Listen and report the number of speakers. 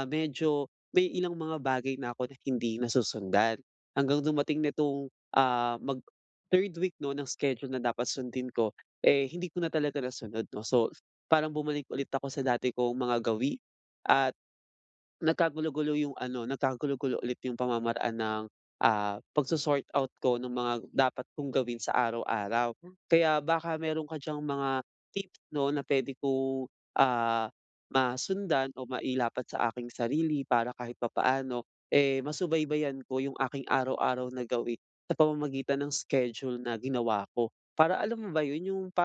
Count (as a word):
one